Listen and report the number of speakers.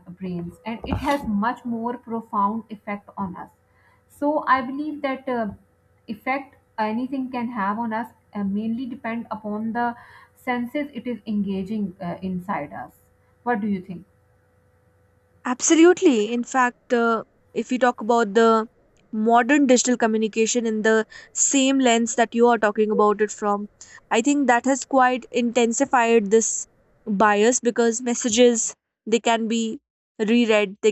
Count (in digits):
2